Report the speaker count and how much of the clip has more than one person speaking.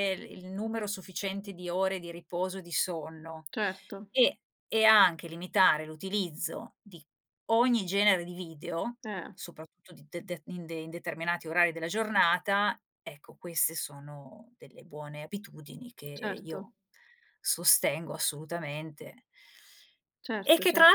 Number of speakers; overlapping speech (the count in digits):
2, about 4%